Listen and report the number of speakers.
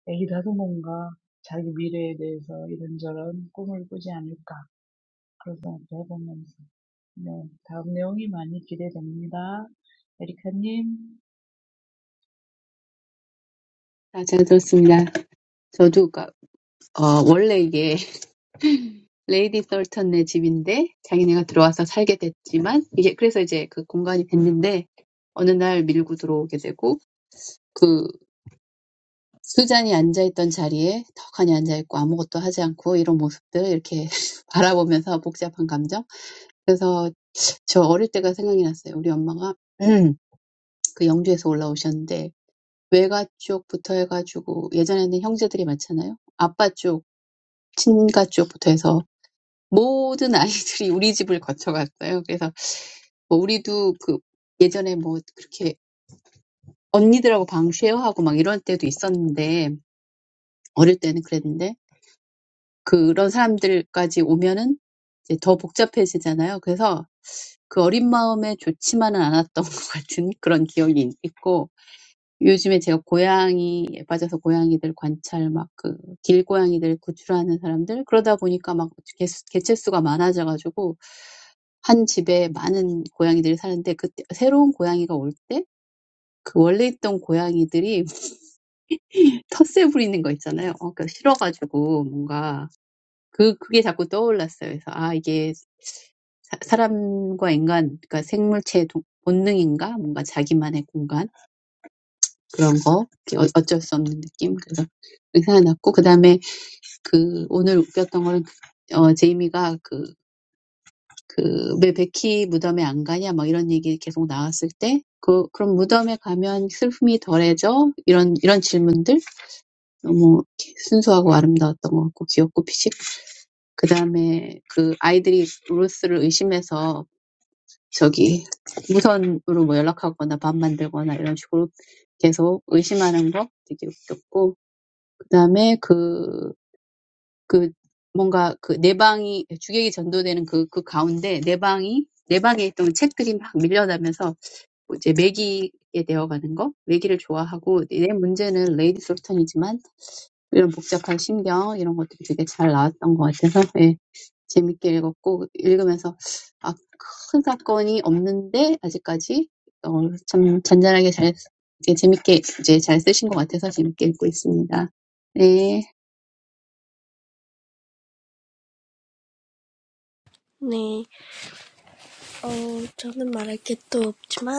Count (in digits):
3